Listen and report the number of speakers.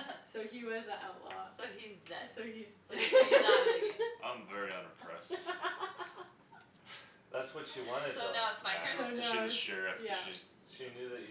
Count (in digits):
4